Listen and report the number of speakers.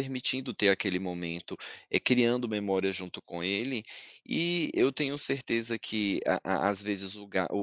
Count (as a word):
one